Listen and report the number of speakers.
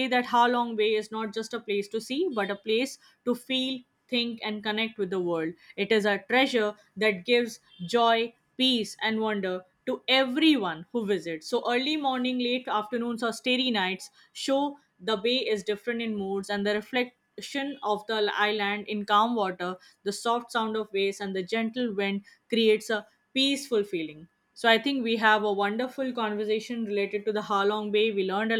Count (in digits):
1